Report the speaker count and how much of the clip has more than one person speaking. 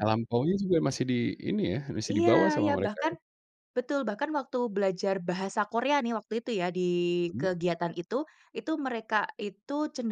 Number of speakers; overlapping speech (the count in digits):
2, about 12%